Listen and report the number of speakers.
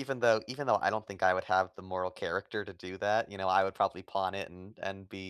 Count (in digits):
1